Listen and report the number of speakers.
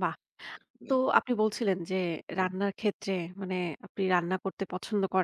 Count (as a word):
one